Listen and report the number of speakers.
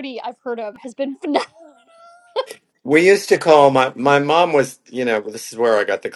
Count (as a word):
two